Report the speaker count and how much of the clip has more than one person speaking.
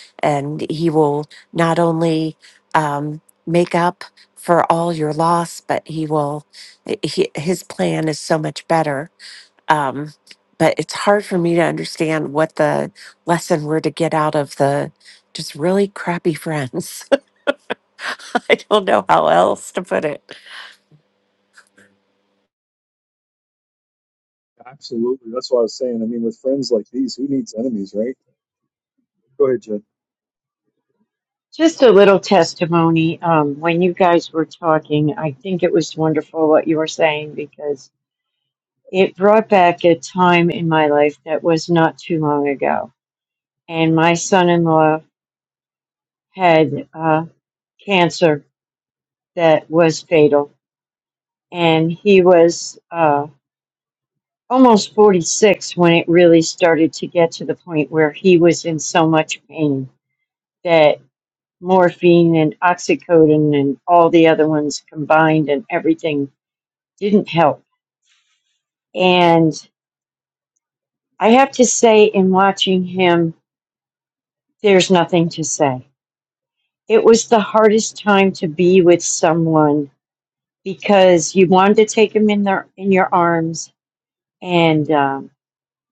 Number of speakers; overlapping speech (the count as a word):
three, no overlap